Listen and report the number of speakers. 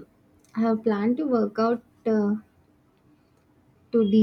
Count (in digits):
1